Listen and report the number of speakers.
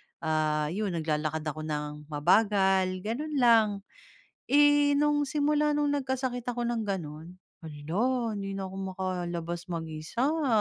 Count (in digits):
1